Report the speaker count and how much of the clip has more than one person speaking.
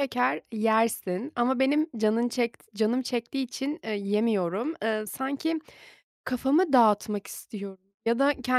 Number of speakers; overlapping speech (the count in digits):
1, no overlap